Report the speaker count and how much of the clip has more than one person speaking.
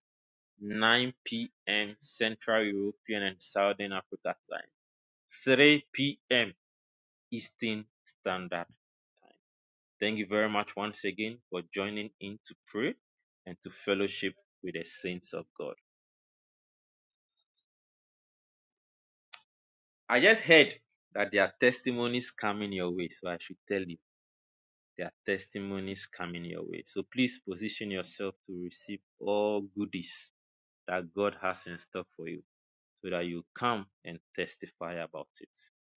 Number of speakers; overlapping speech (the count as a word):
one, no overlap